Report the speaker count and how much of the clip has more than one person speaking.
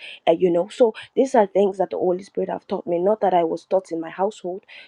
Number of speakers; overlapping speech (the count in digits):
1, no overlap